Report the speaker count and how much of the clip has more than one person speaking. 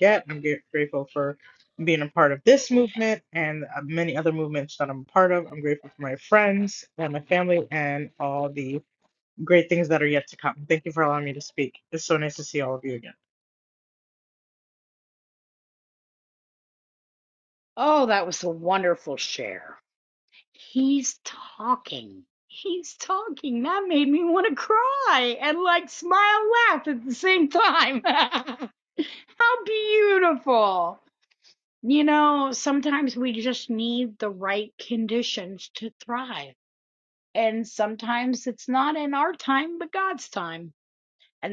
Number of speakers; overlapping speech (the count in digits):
2, no overlap